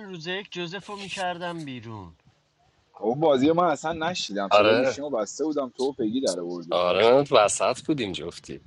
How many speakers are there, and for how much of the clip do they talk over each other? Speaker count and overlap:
3, about 9%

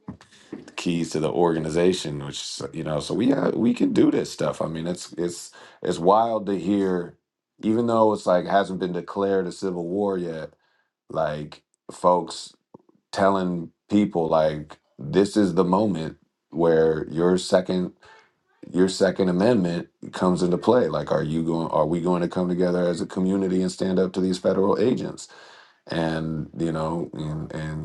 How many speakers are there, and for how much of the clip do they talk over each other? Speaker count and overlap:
1, no overlap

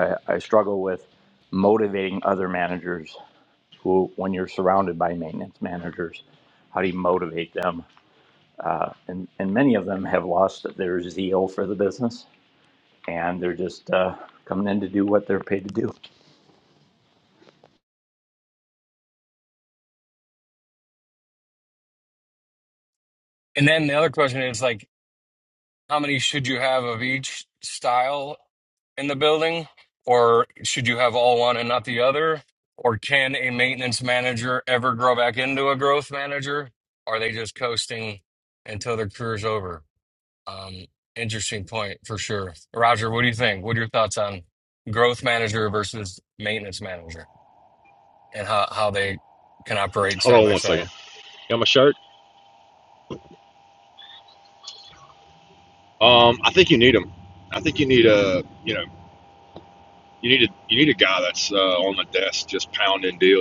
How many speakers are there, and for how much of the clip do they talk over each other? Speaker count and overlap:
3, about 1%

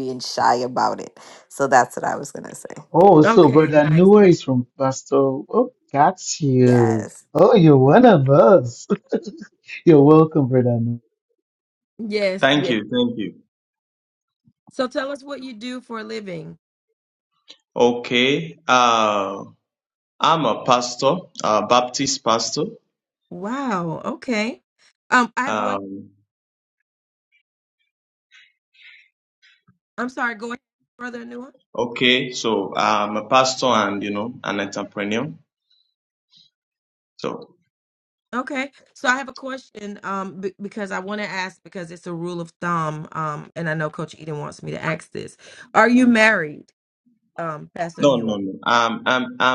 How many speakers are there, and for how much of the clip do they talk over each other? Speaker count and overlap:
4, about 5%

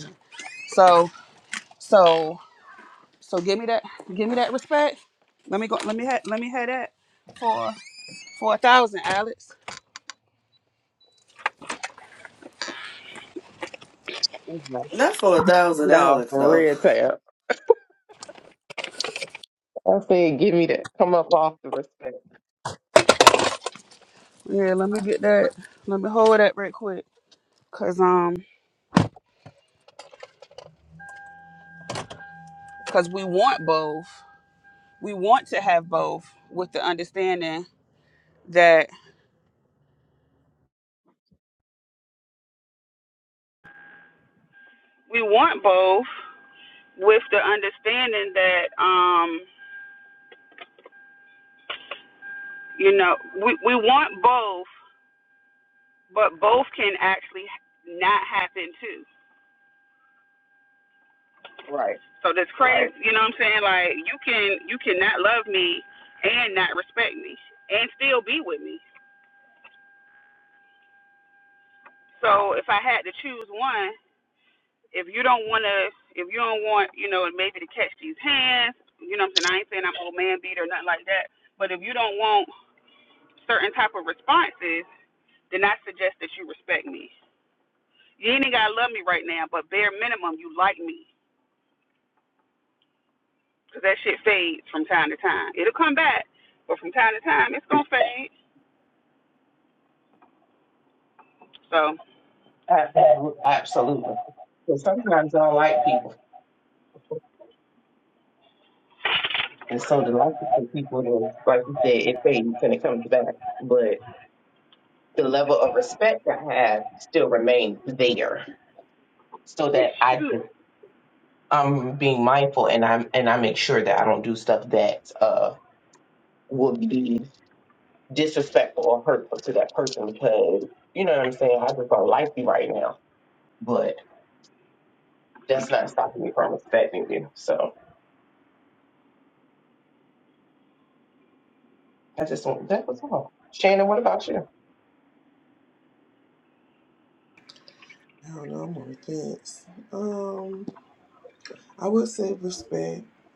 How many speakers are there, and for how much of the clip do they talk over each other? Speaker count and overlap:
4, about 1%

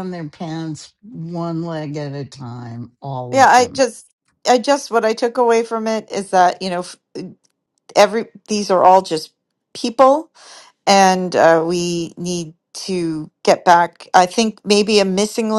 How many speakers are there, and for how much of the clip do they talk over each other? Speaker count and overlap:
2, about 3%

